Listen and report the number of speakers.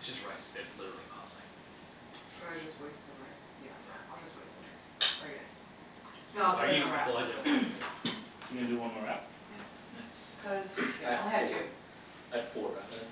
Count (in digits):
3